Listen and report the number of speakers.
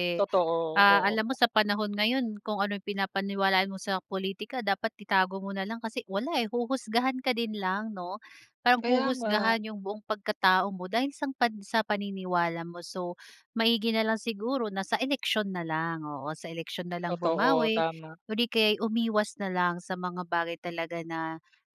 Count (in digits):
2